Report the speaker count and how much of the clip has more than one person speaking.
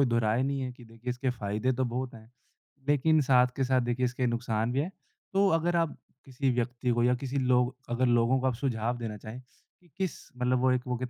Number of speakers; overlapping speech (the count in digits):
1, no overlap